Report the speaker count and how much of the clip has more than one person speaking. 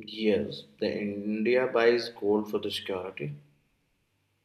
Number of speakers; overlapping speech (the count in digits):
1, no overlap